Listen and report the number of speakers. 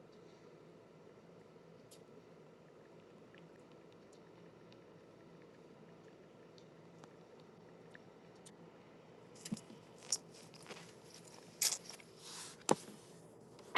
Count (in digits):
0